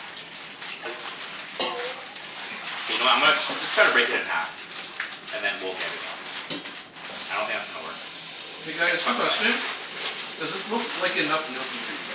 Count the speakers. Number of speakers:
2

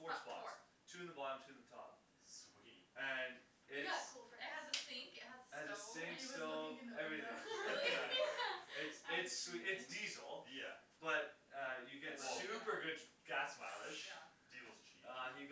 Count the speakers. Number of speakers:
4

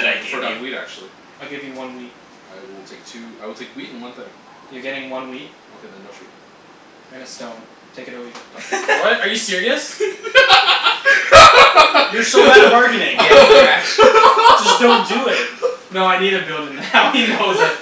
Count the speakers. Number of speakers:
4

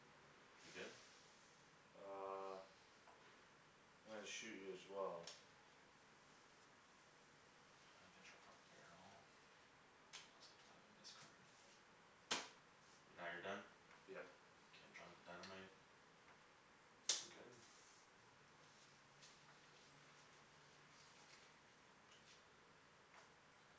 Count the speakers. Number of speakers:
2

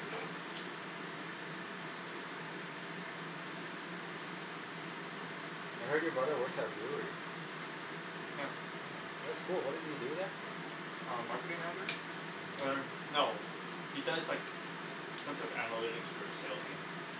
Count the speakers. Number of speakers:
2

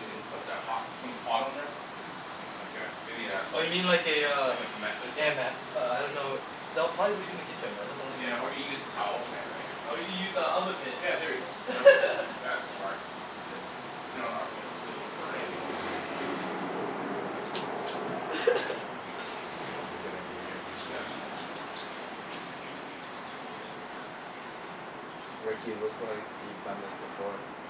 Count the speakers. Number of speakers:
3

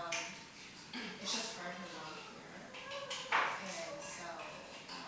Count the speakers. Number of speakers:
1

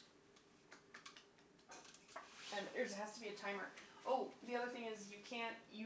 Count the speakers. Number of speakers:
1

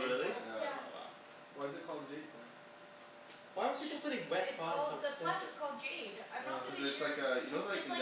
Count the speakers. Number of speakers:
4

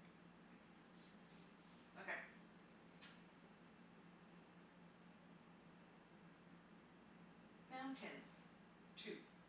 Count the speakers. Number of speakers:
1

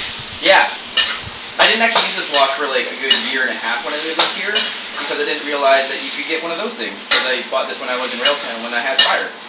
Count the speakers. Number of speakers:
1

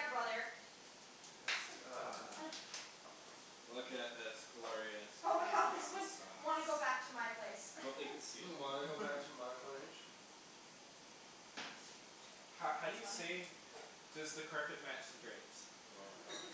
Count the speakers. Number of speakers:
3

